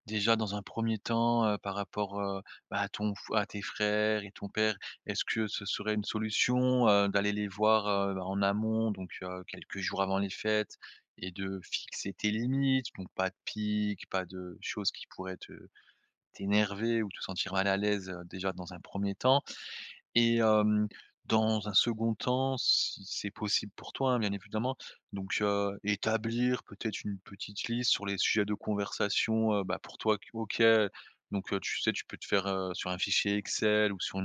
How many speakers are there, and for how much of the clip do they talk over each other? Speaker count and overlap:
one, no overlap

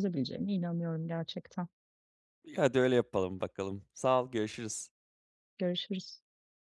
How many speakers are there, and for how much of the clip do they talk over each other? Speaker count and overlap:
two, no overlap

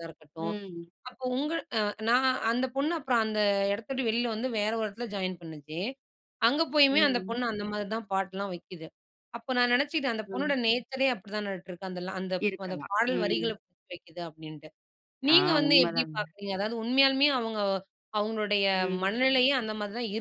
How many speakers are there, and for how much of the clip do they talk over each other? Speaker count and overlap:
two, about 15%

